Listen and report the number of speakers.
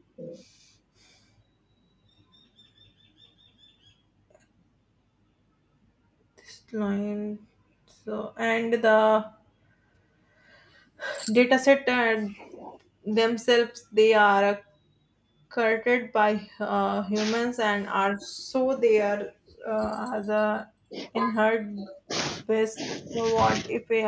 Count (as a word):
one